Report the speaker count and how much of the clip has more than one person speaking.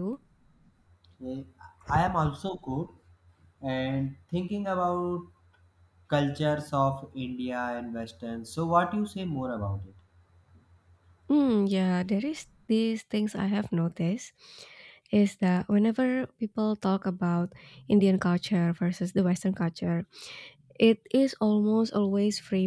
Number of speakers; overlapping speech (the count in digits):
2, no overlap